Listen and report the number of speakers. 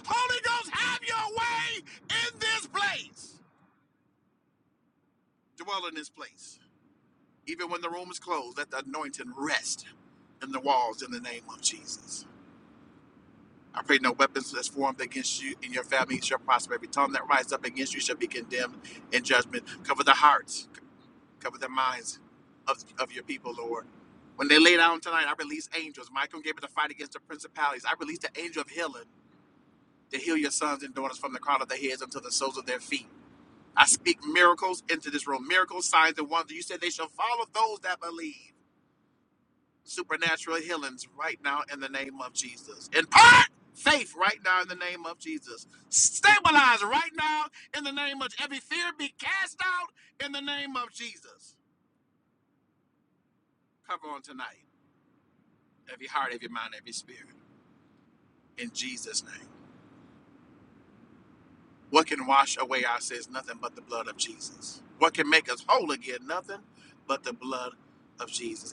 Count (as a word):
one